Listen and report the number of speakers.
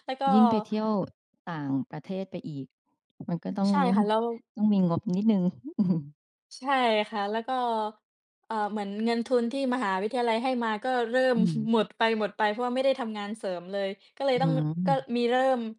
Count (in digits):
2